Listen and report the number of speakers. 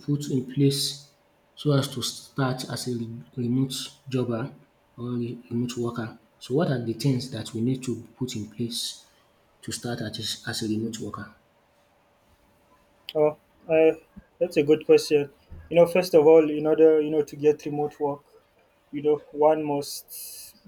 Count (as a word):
two